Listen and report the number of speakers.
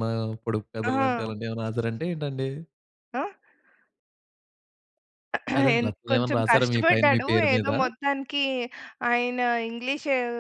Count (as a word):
two